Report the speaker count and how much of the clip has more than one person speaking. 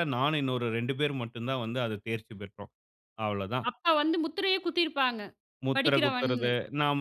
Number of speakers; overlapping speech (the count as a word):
two, about 11%